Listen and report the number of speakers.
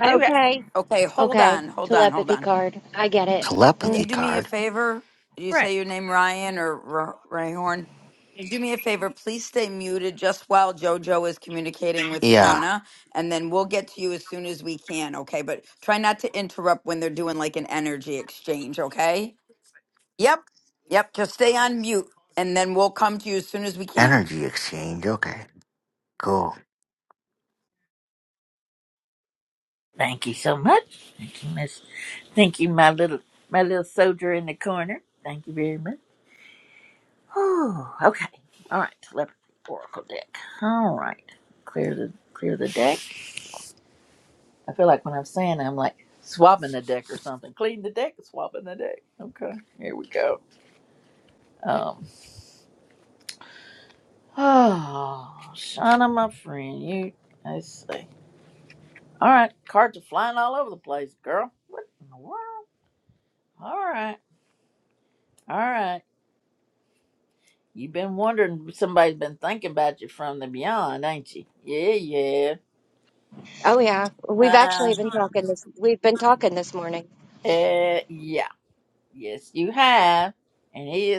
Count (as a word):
four